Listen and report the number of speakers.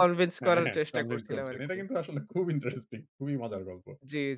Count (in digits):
2